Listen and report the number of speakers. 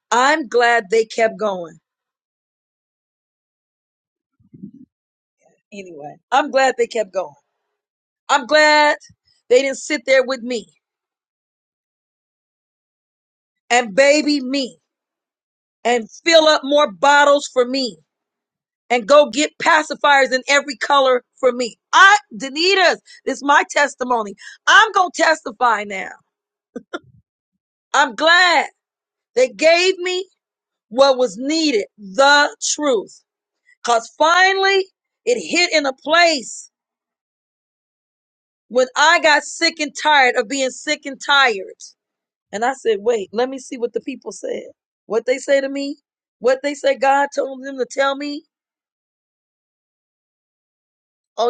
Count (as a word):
one